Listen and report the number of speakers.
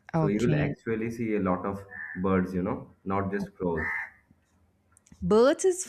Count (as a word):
two